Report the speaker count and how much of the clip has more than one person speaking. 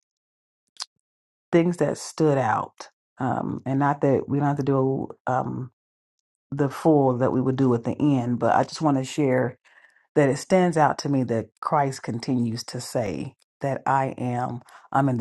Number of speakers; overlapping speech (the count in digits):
1, no overlap